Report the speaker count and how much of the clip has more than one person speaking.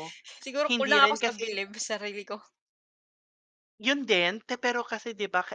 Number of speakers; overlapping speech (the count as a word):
two, about 17%